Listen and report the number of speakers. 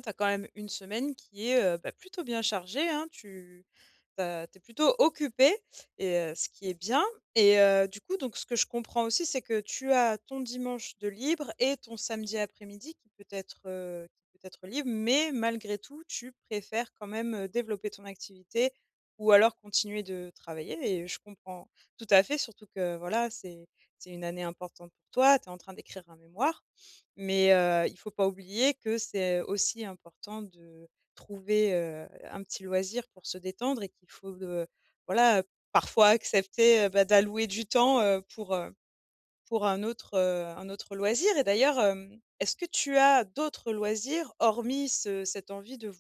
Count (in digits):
1